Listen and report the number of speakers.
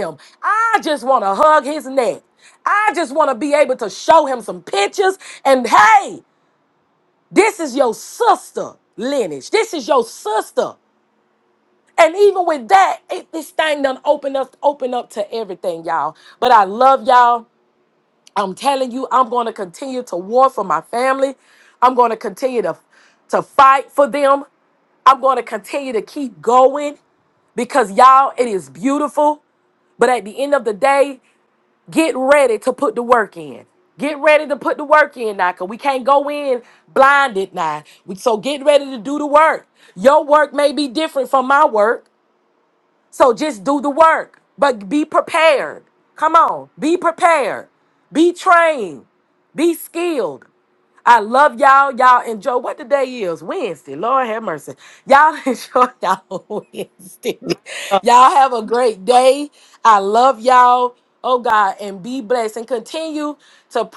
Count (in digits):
1